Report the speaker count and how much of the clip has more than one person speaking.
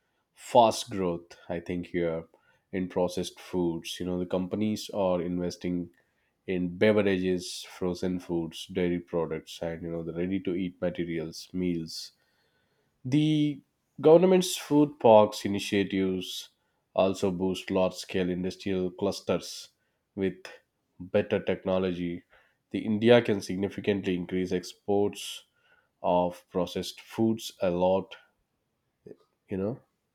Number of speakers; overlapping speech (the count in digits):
1, no overlap